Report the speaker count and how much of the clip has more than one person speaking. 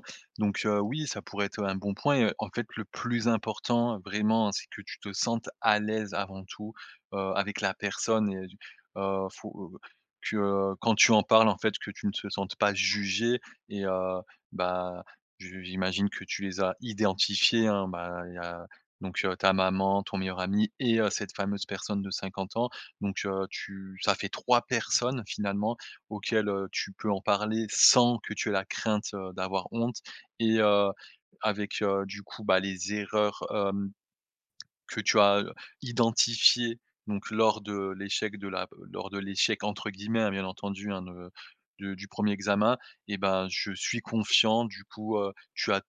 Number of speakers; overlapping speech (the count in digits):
1, no overlap